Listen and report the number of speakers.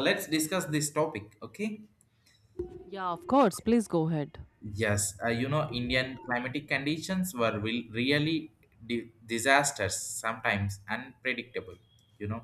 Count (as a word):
two